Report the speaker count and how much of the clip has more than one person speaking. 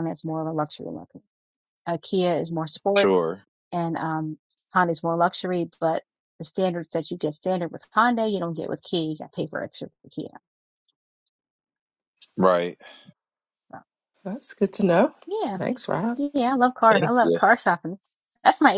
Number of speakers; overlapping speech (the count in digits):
3, about 4%